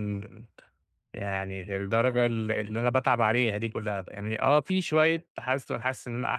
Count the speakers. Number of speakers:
1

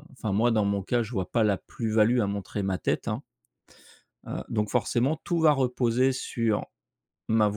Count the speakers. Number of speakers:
1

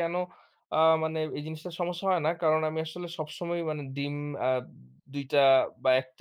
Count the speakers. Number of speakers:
1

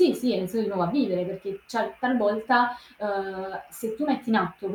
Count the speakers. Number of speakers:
1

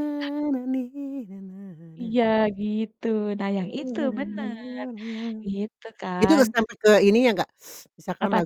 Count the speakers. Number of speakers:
2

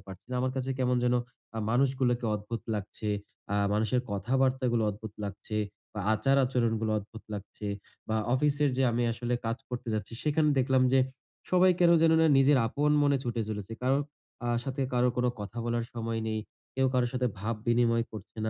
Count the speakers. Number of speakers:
1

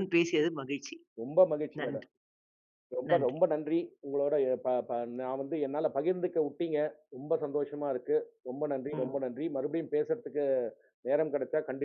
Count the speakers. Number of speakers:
2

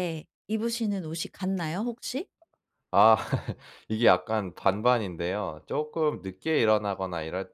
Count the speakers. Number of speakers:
2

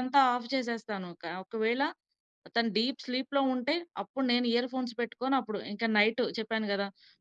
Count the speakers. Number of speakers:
1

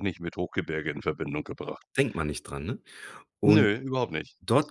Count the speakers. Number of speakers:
2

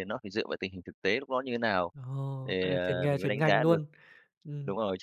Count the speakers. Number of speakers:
2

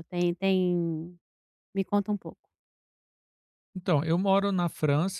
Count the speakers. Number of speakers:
2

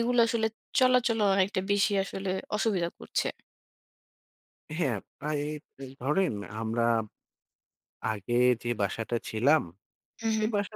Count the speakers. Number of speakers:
2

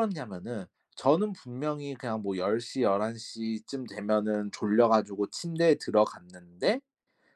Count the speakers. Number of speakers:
1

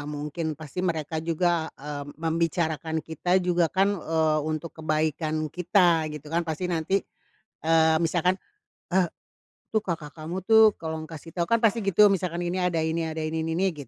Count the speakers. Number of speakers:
1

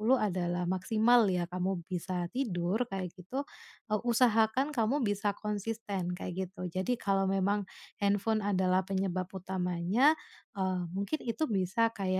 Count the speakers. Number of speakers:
1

